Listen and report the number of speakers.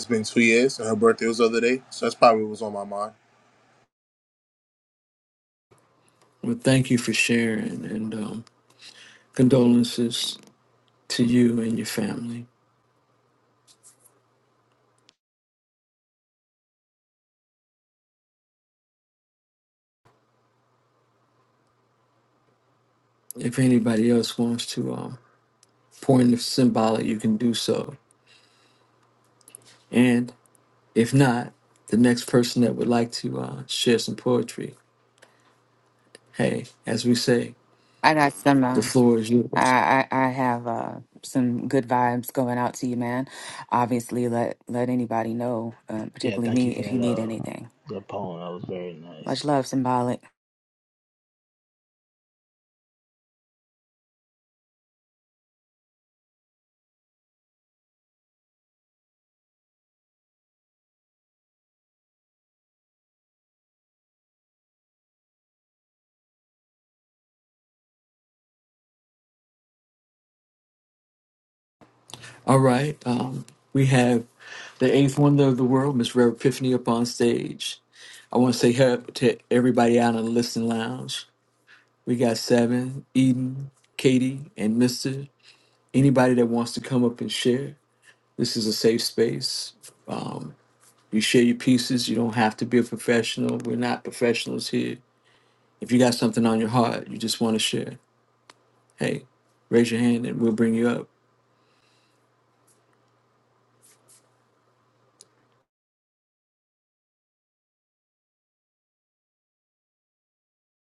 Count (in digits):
4